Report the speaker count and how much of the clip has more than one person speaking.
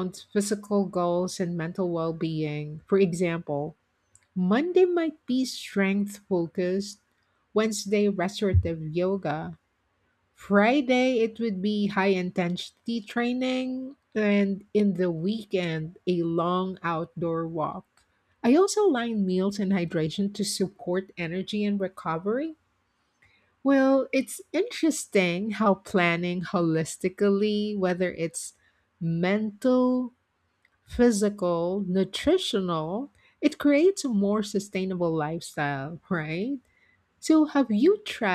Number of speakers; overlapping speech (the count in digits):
1, no overlap